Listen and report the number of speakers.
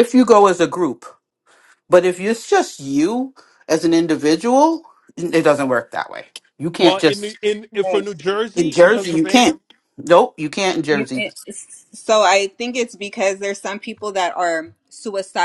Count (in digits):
3